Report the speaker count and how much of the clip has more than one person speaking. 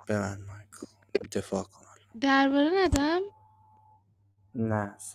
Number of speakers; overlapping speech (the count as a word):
two, no overlap